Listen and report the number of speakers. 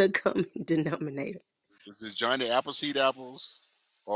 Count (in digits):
2